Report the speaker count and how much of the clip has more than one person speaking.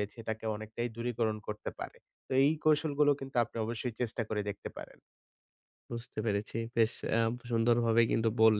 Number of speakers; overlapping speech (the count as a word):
two, no overlap